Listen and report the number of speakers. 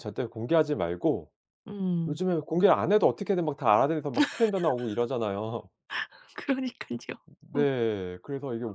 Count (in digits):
2